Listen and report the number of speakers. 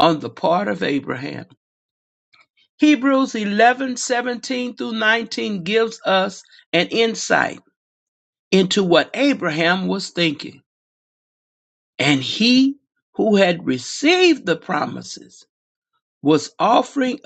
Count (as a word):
one